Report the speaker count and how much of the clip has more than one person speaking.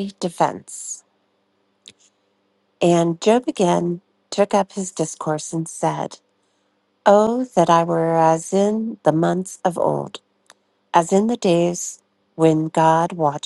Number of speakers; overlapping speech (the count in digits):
1, no overlap